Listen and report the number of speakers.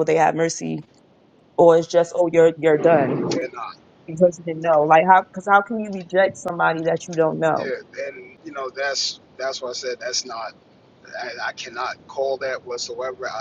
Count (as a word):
two